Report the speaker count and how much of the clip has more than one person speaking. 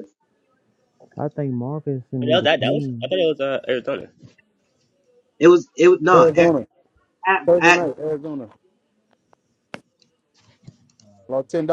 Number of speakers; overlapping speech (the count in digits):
4, about 14%